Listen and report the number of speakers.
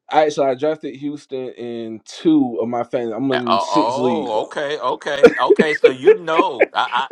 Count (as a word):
two